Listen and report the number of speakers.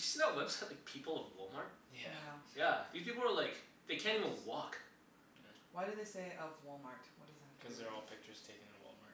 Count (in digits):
3